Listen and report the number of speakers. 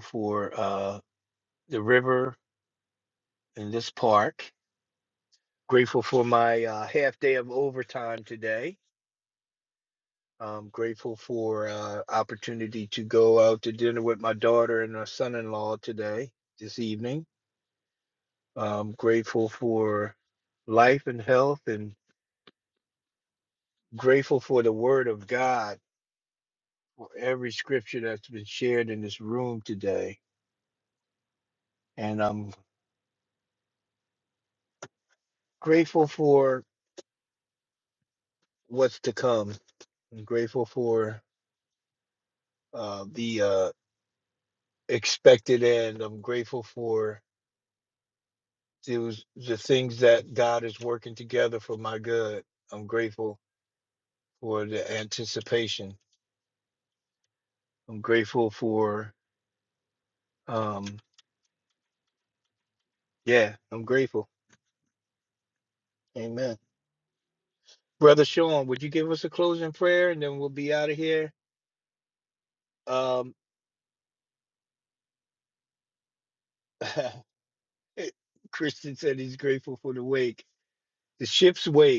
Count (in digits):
1